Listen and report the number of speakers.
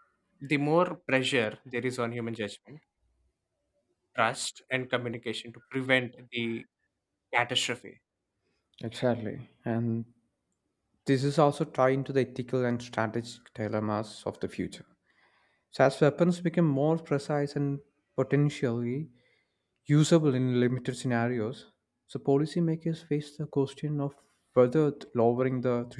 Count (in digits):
2